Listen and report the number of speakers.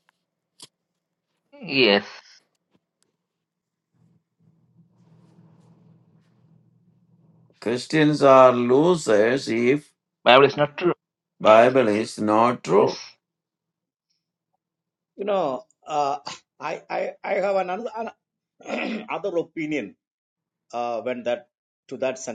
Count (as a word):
three